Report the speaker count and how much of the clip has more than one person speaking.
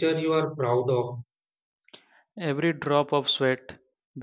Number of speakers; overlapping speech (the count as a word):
two, no overlap